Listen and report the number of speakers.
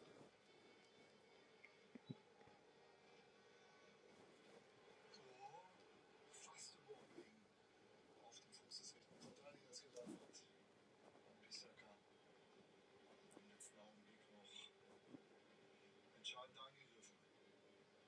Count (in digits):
0